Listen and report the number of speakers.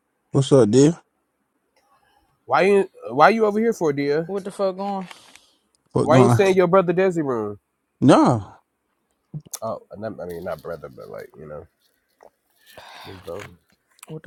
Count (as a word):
three